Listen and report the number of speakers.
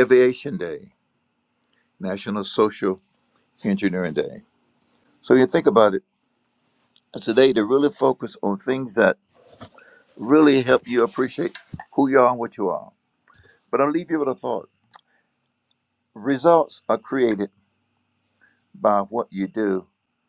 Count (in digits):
1